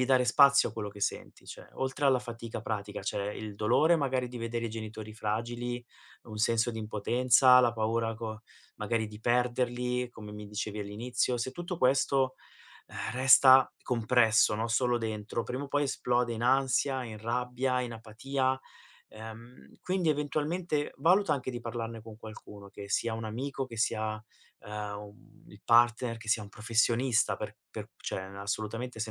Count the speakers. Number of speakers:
1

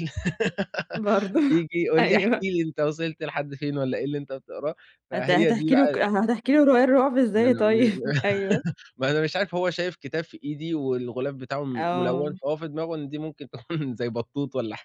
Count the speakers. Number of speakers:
2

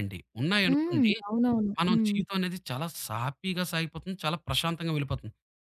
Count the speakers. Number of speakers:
2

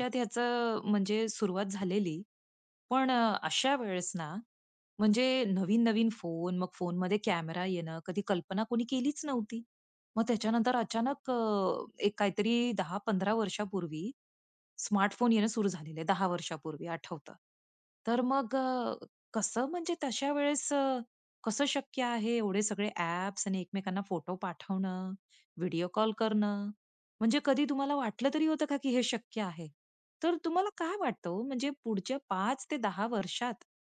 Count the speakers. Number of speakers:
1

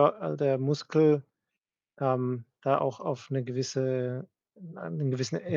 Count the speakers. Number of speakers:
1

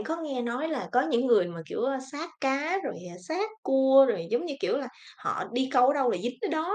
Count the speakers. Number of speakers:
1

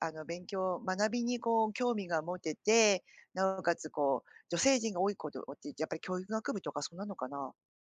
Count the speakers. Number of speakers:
1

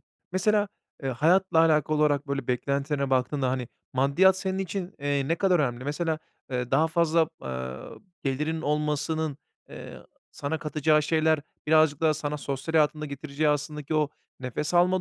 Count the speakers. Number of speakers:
1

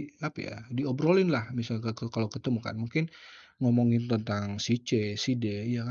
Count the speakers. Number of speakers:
1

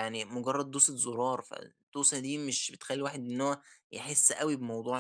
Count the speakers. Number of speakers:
1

